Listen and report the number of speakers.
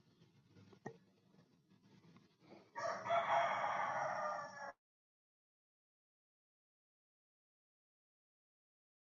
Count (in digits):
0